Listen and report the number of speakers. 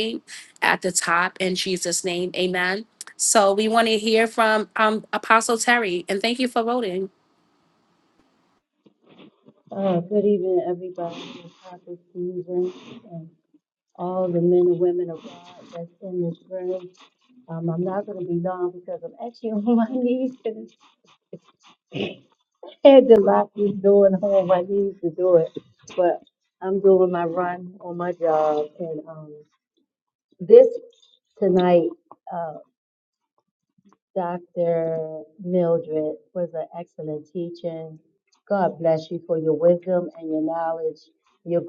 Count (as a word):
two